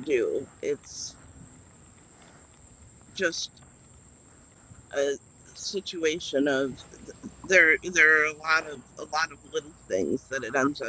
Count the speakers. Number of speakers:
one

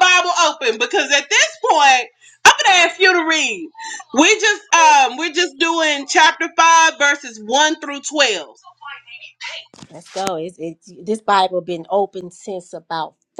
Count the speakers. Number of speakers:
two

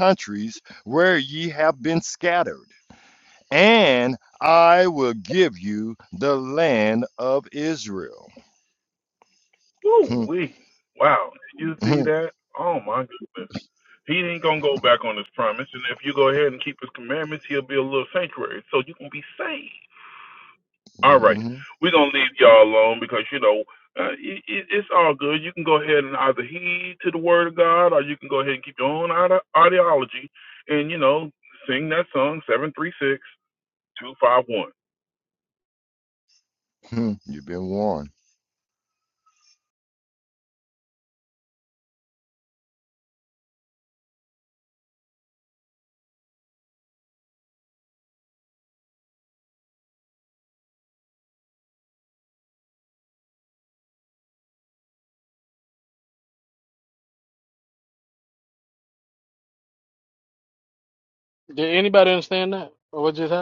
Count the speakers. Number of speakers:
three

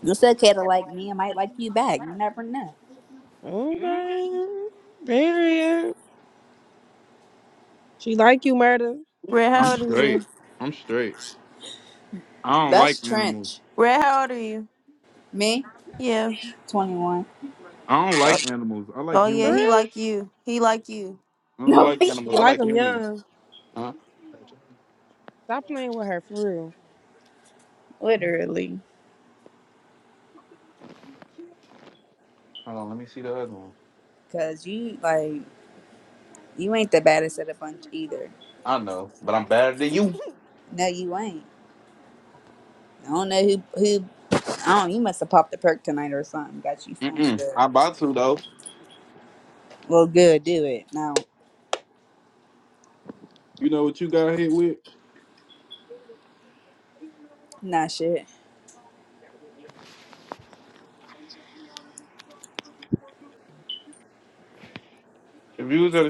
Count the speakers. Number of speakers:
four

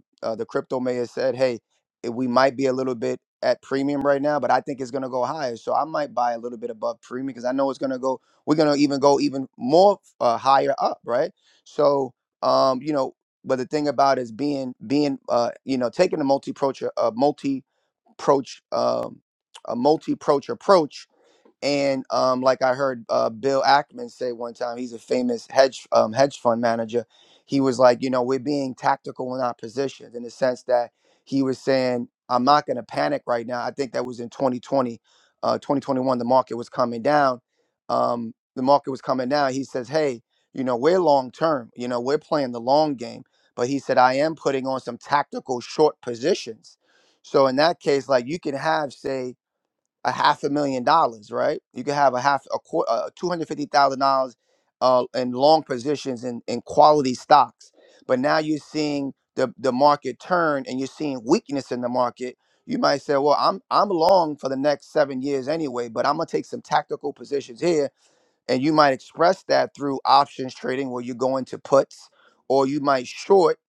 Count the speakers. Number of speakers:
one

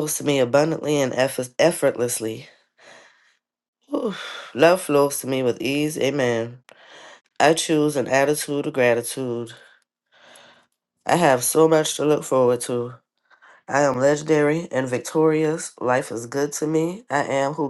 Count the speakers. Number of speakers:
one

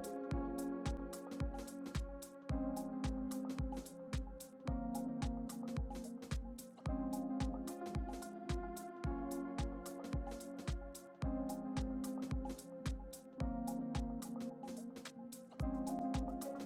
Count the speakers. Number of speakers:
zero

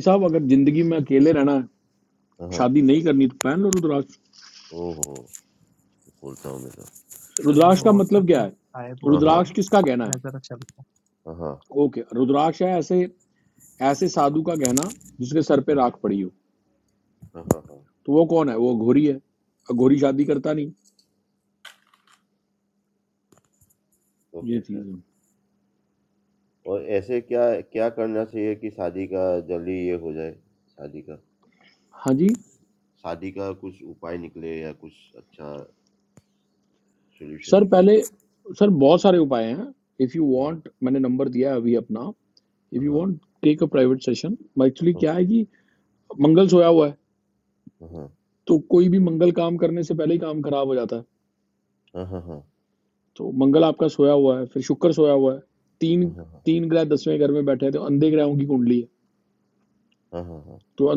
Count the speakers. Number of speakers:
three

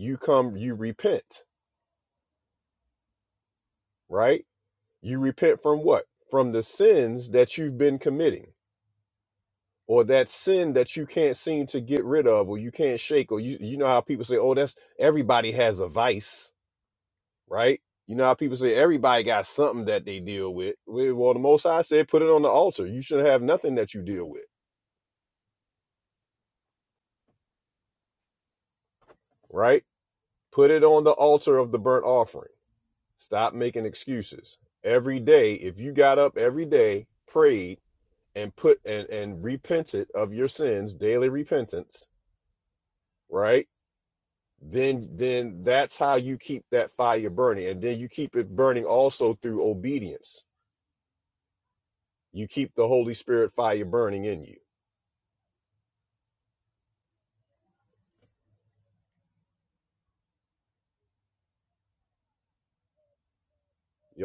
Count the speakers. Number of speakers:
one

